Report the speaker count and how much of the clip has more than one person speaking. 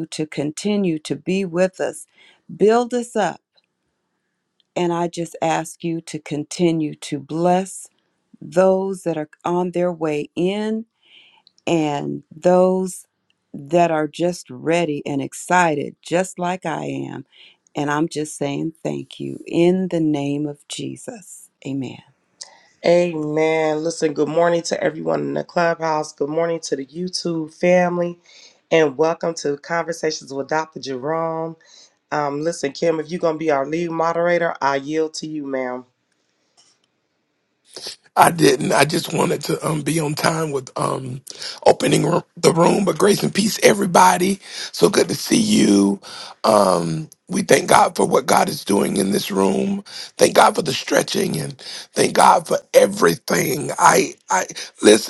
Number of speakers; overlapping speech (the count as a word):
three, no overlap